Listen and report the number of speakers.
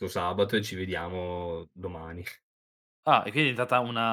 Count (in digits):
2